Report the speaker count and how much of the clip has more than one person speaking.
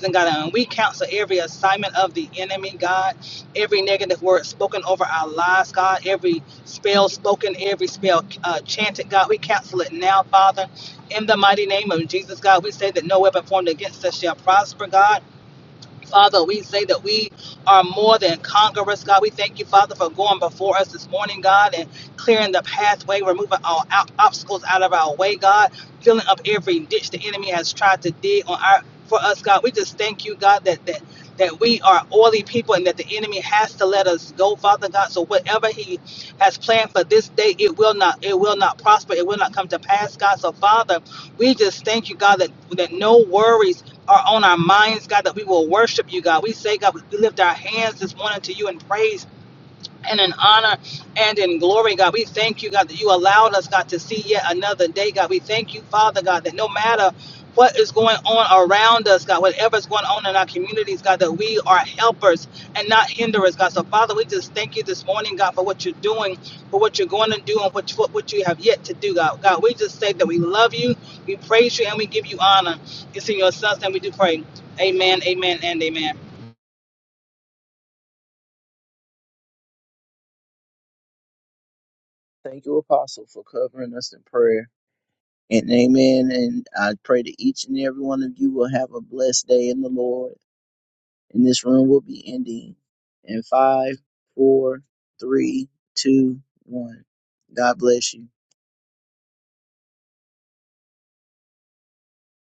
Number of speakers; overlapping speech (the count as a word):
two, no overlap